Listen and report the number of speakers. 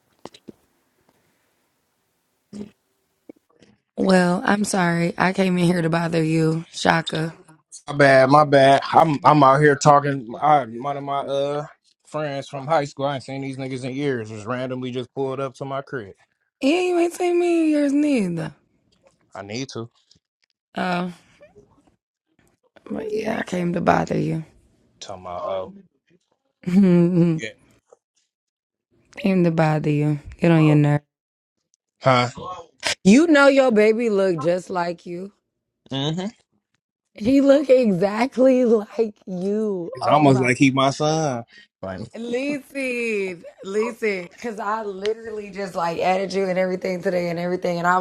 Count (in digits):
2